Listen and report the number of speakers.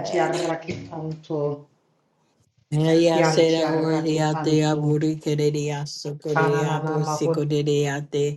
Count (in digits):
2